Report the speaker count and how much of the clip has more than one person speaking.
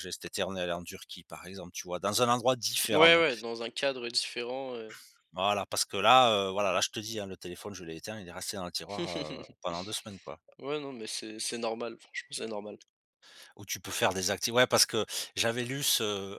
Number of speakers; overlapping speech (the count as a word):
two, about 2%